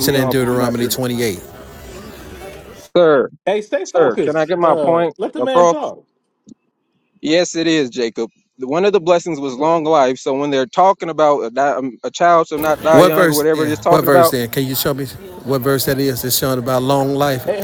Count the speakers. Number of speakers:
3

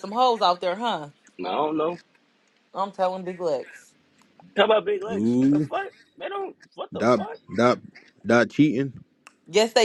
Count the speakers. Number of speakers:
3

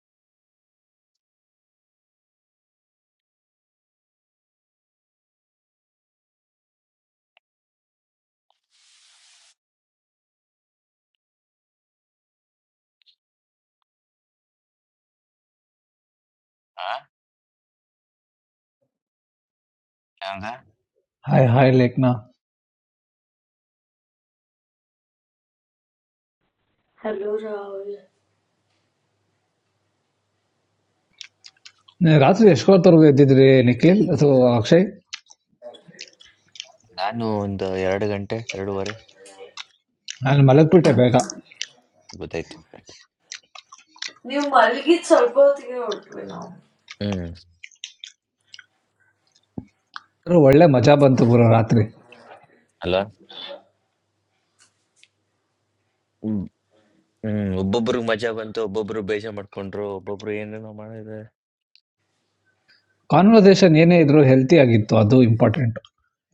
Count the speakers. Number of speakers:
3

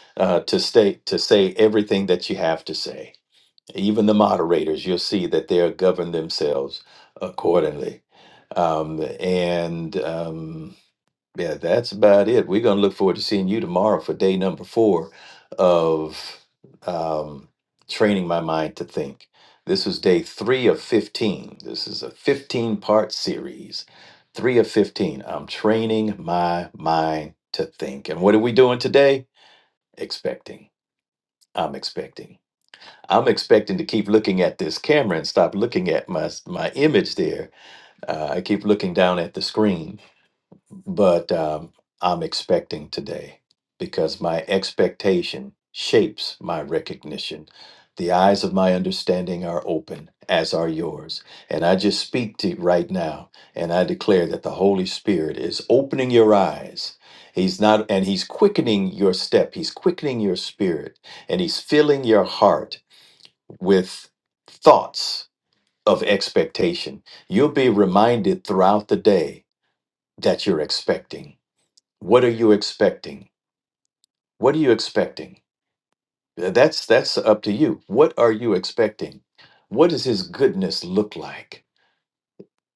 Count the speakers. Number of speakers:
1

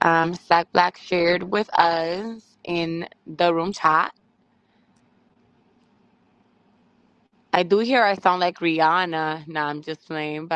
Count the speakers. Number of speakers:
1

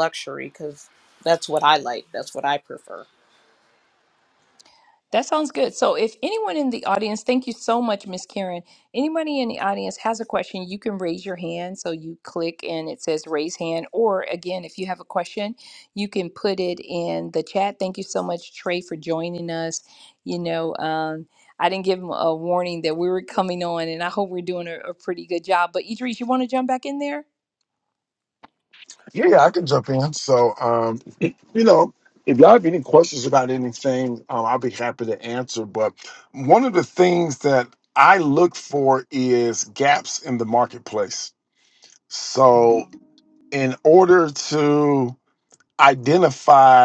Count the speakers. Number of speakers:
3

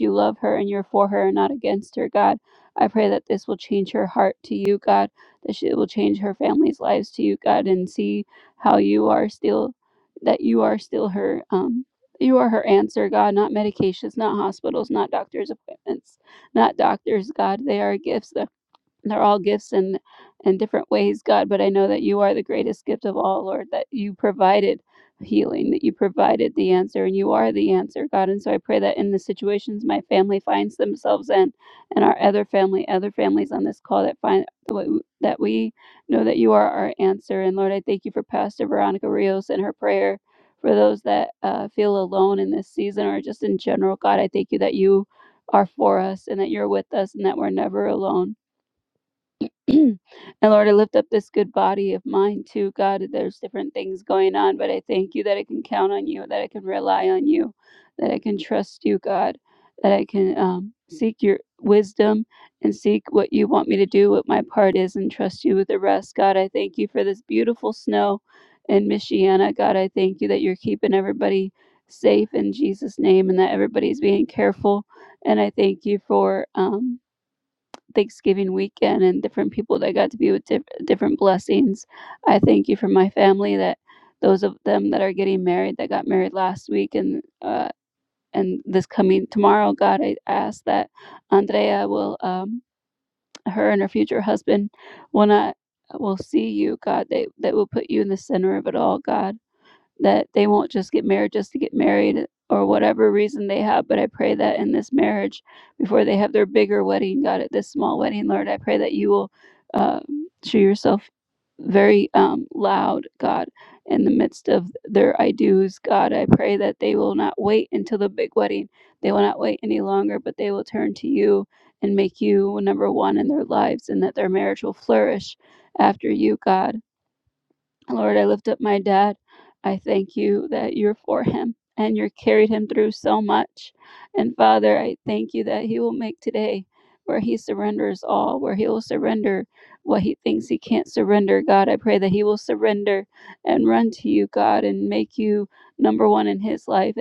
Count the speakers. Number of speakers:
1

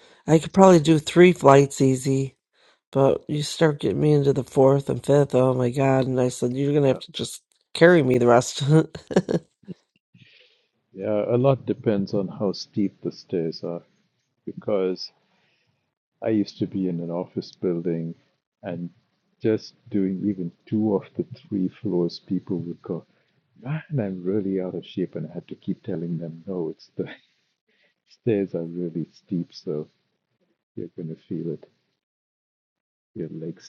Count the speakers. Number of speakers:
2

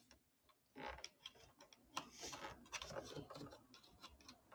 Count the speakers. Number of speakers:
0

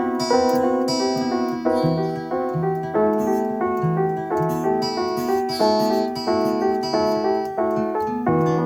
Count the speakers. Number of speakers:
0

